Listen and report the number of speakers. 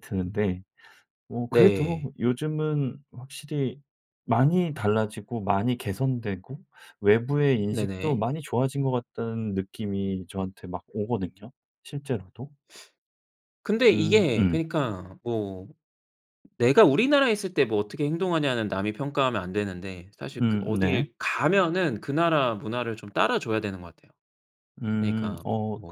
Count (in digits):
2